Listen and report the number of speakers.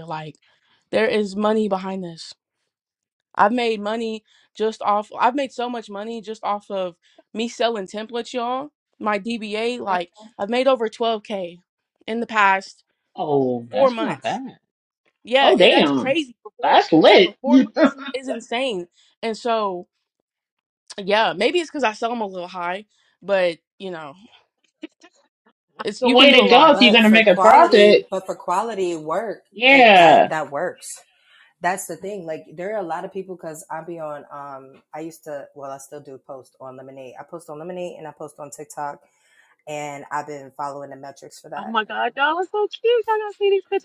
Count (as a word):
four